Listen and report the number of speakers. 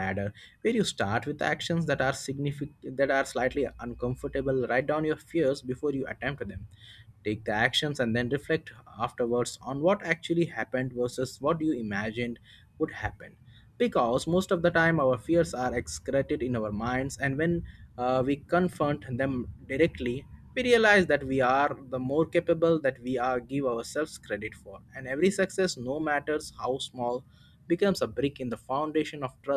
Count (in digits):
1